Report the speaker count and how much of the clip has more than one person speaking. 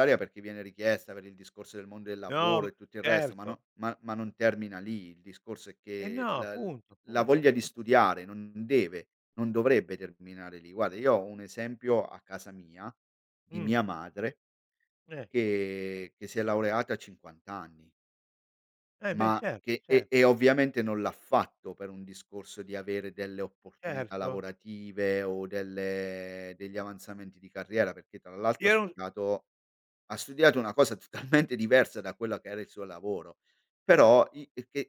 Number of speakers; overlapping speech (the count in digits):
2, about 11%